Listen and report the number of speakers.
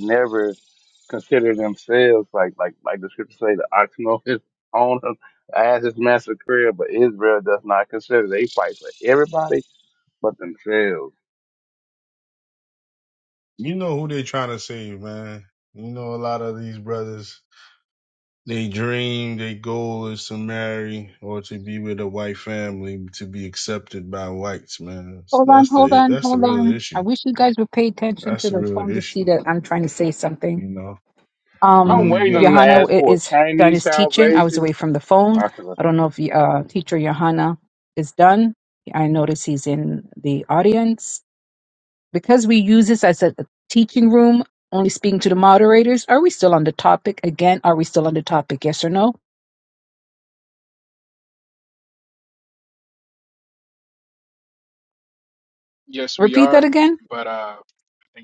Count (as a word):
four